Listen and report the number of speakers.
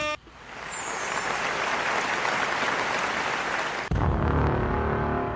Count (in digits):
0